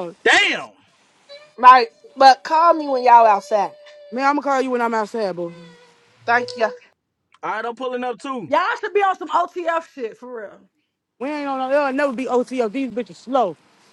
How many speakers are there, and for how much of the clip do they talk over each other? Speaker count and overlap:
4, no overlap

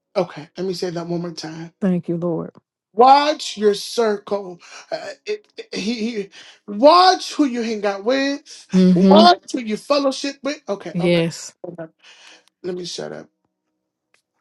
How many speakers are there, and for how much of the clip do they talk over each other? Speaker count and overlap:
2, about 4%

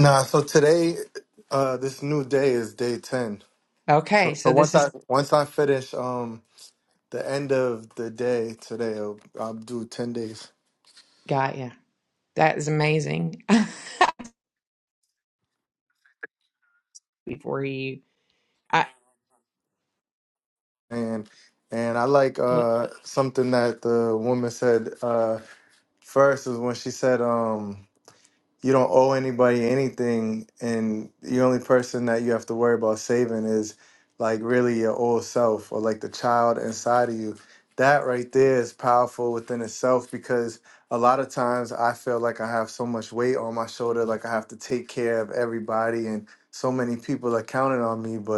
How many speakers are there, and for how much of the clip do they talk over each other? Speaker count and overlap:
2, about 1%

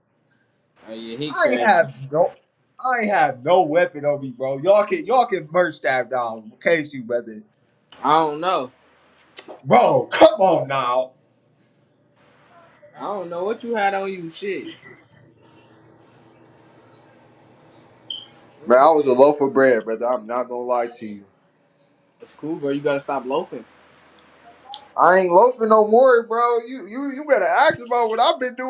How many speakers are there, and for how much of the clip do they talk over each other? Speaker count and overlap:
2, about 1%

